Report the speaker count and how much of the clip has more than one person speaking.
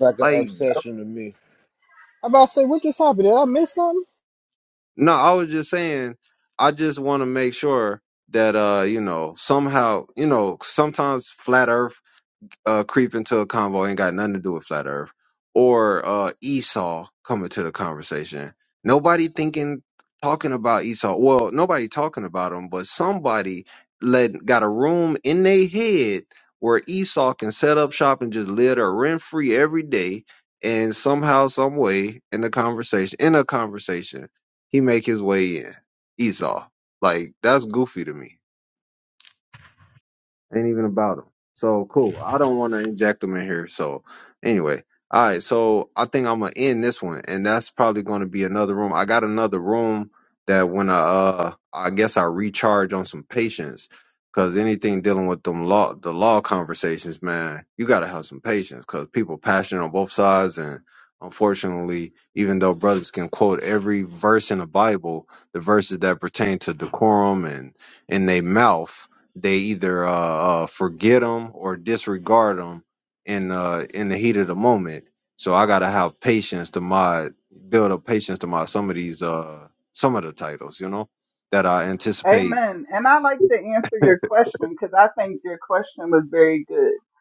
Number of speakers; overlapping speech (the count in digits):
4, about 1%